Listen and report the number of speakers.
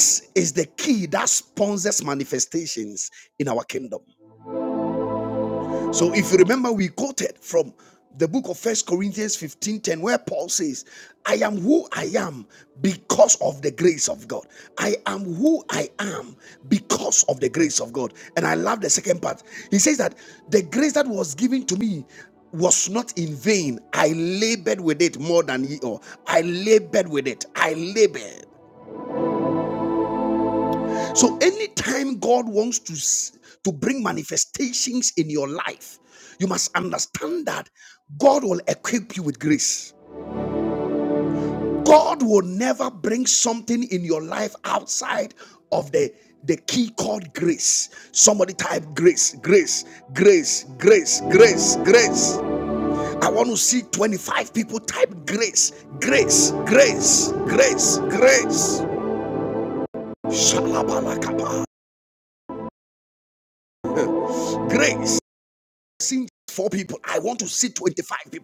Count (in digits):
1